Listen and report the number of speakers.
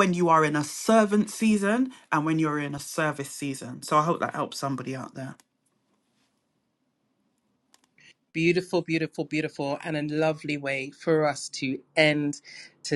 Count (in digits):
2